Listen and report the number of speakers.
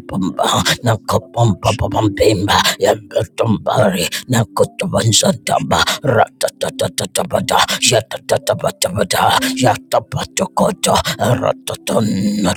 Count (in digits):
1